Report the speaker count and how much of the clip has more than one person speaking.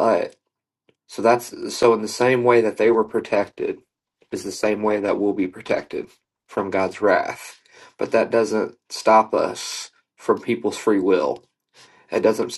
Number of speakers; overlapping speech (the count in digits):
1, no overlap